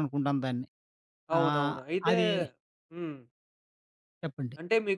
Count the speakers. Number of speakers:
two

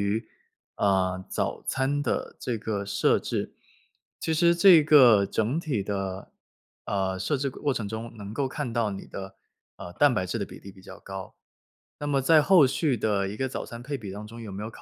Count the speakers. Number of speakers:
one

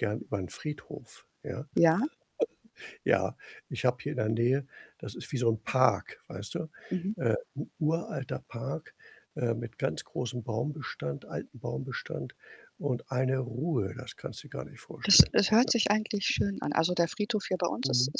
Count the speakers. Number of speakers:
two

